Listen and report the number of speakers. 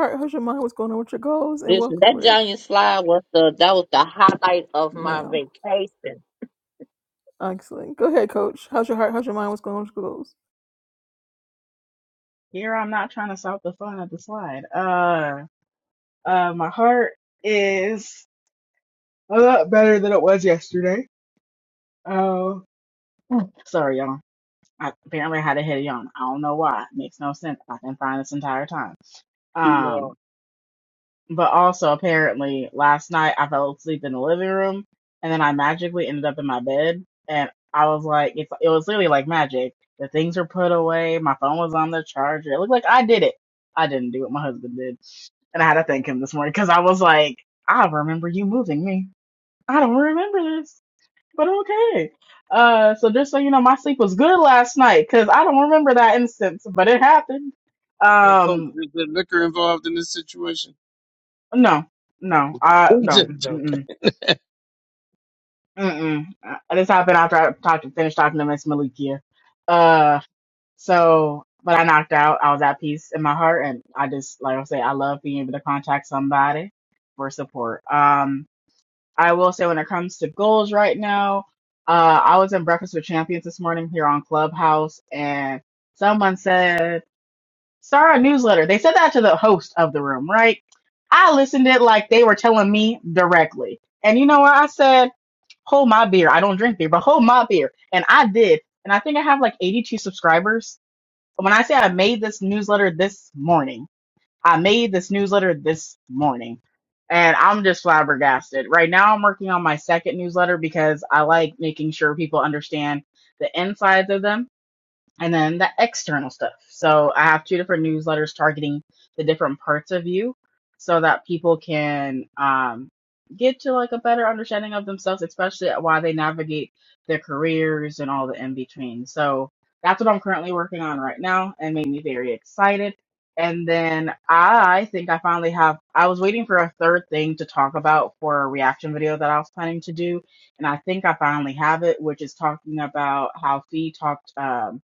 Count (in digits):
4